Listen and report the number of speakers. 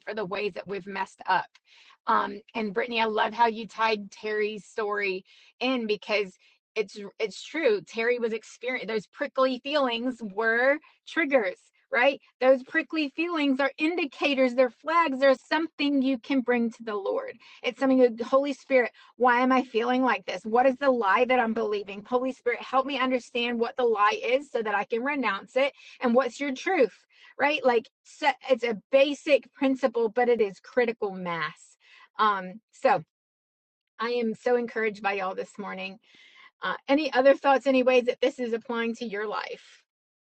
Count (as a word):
one